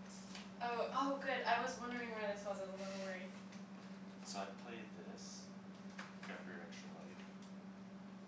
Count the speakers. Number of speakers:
two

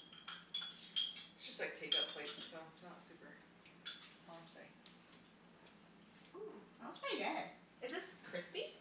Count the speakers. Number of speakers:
two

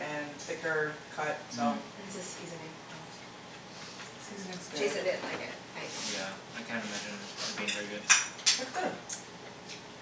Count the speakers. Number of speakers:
three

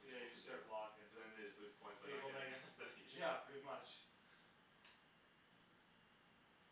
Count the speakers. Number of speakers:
two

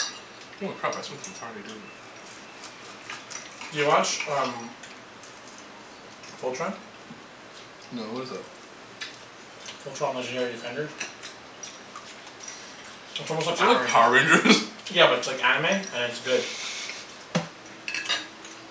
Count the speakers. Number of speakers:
two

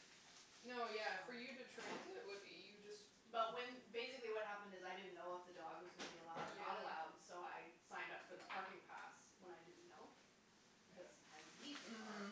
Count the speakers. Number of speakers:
two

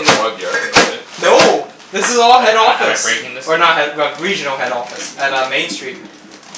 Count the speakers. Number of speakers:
three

